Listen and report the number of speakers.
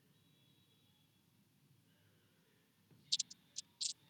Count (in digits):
0